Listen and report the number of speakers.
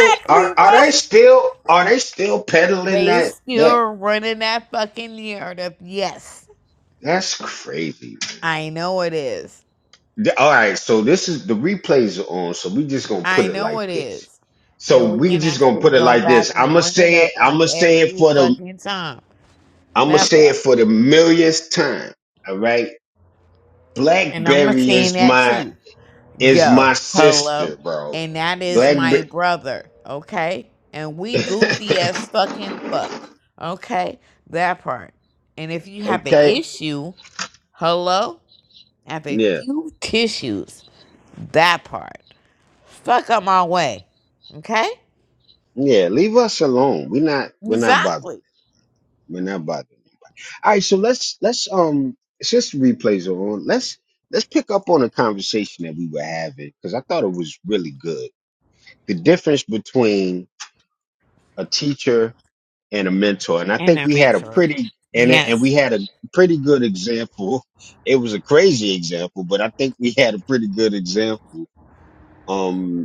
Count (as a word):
two